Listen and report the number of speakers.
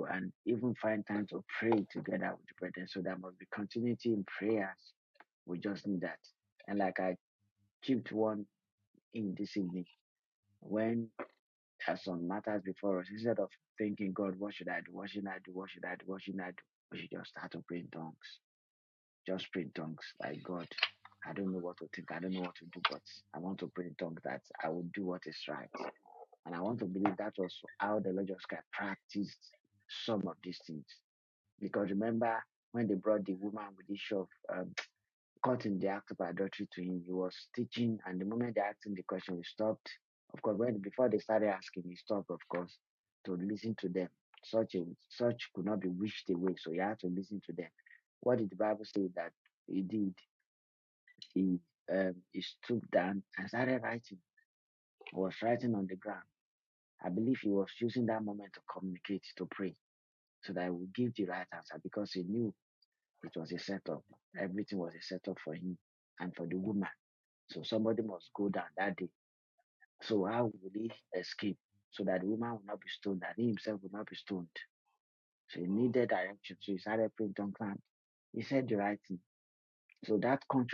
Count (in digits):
1